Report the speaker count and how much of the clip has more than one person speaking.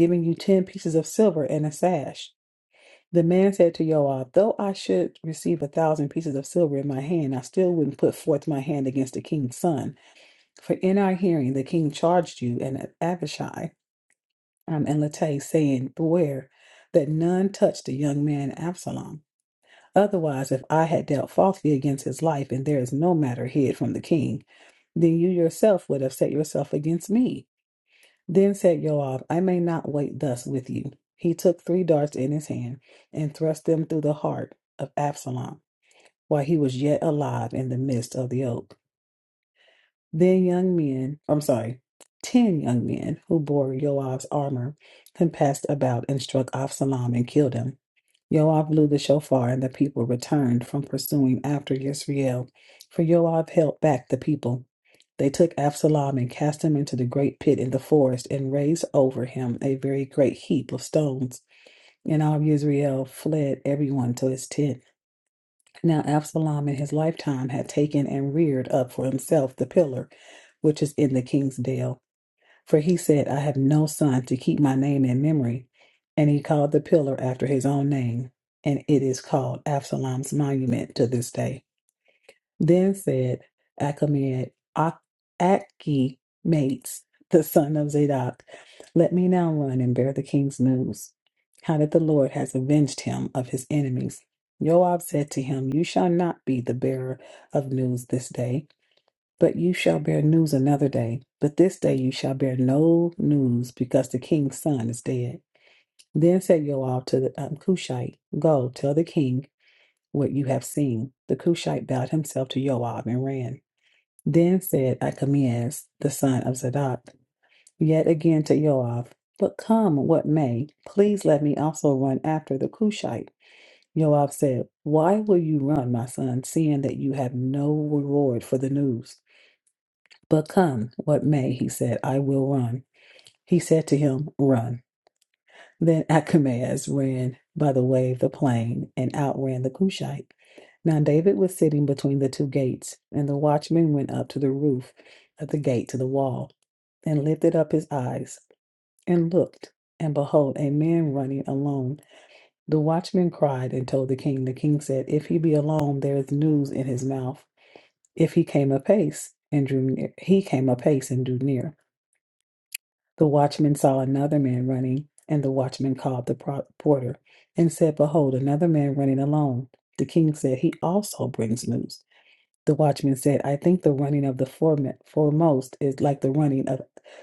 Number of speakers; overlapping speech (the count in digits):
1, no overlap